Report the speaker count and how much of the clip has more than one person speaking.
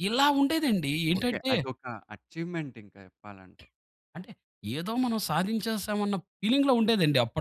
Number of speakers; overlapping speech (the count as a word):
two, about 6%